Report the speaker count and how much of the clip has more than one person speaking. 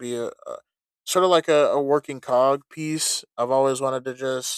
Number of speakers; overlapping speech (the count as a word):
one, no overlap